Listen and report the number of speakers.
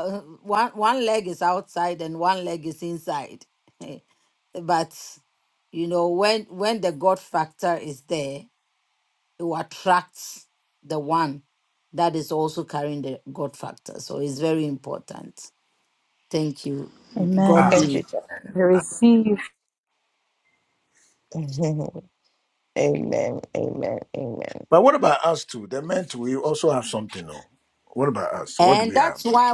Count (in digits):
4